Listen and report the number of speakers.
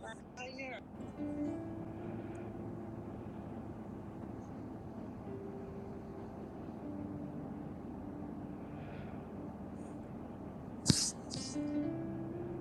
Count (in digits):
0